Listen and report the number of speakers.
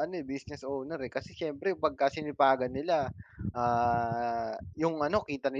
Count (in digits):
1